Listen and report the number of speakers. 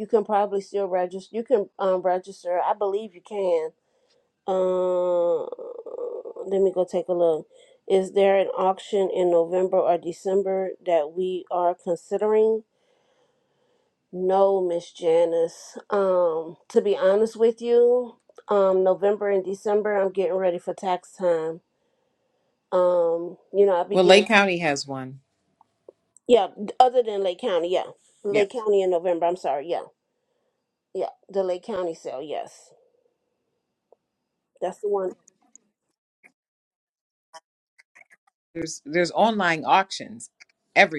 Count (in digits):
2